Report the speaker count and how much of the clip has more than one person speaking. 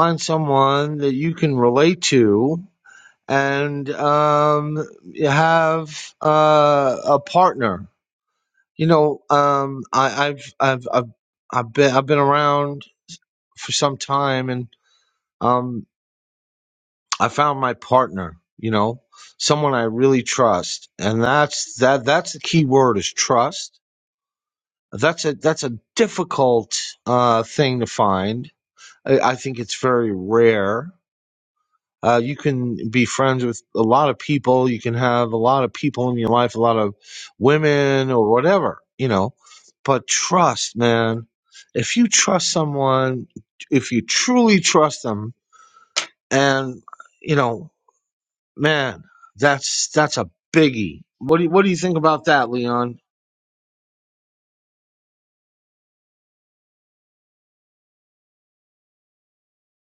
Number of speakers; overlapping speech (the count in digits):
1, no overlap